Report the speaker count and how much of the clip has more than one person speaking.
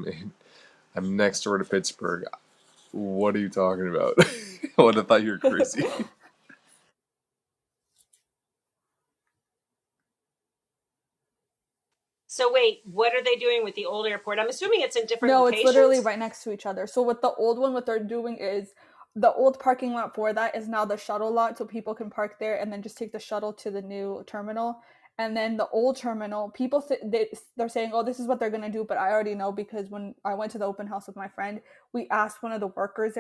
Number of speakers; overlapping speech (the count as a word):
three, about 2%